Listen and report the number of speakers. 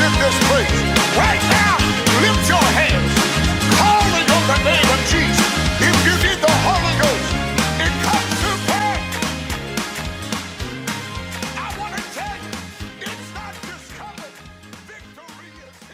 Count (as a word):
one